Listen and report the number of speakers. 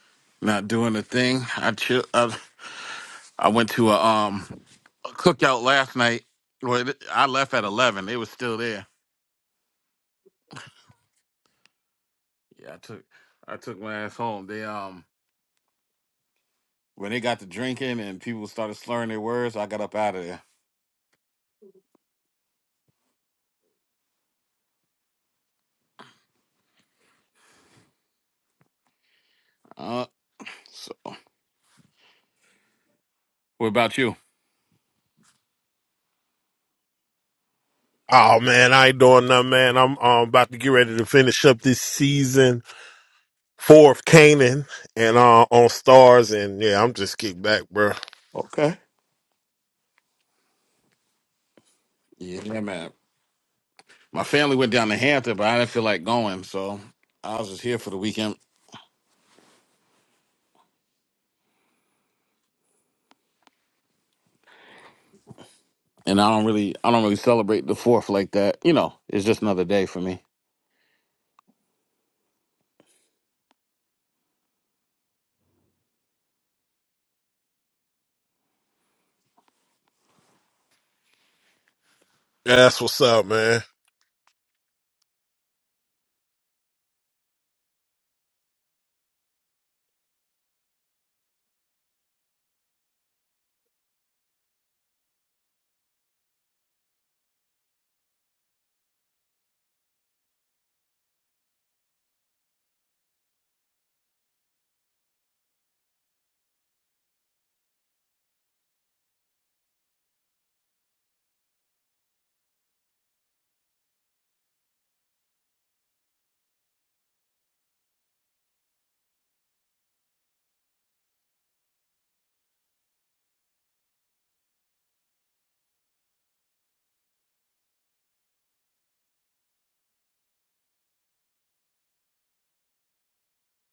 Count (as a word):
two